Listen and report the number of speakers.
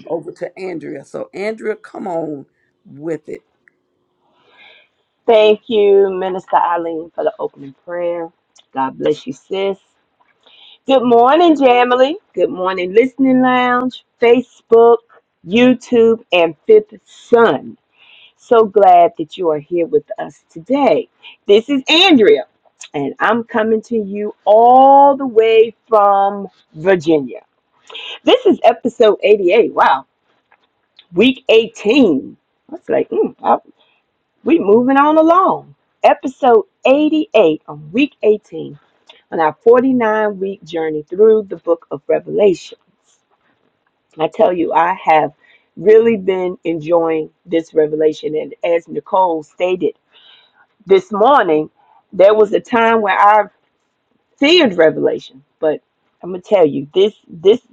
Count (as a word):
two